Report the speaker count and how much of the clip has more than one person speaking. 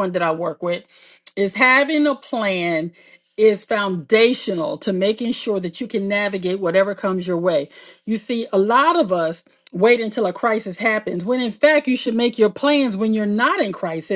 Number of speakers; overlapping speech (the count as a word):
one, no overlap